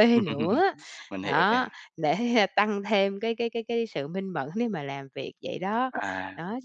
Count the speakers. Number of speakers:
2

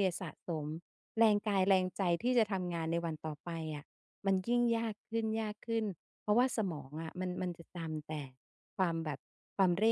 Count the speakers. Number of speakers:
1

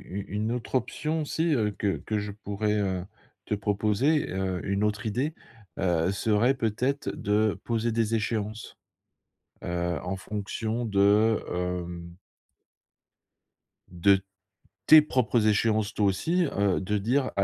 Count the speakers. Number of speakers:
1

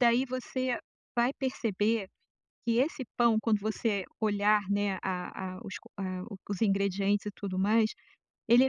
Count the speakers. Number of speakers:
1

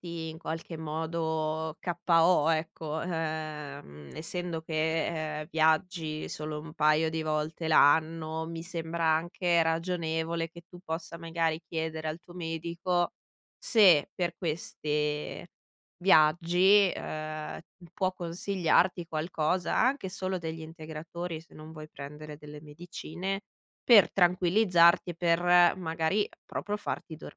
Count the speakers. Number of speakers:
1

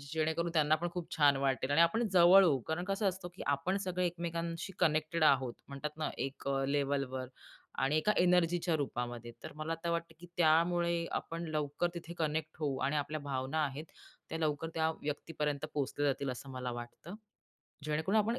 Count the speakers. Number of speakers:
1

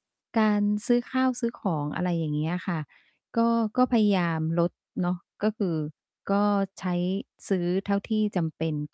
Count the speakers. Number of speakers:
1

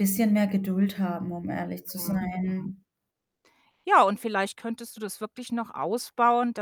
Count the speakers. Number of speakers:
2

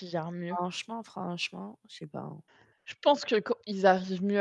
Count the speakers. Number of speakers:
2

